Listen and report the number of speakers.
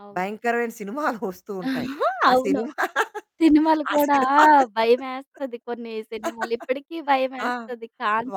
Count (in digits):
2